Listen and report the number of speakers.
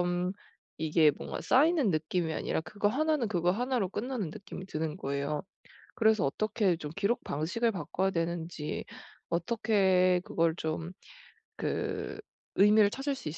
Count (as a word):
one